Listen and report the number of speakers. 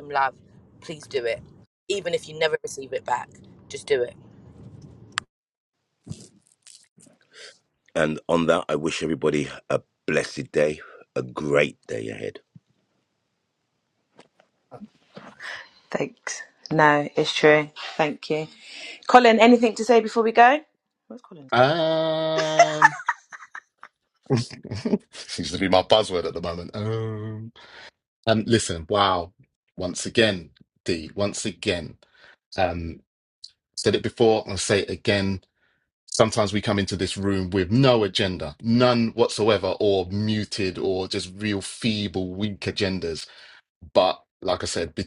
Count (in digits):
4